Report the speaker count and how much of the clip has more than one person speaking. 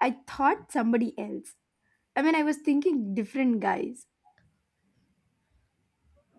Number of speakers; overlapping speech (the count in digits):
1, no overlap